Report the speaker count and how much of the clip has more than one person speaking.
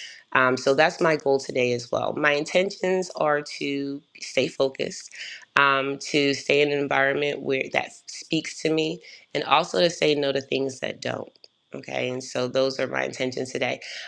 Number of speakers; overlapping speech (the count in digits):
1, no overlap